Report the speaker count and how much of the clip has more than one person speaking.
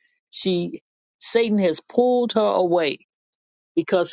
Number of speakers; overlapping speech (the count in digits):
1, no overlap